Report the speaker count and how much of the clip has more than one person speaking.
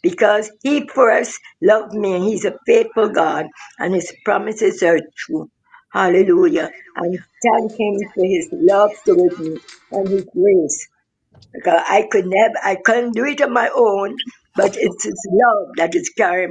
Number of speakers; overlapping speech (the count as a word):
one, no overlap